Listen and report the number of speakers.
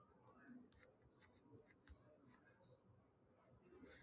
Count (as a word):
zero